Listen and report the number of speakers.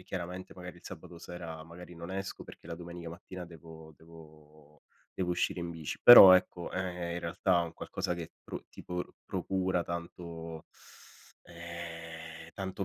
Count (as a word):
one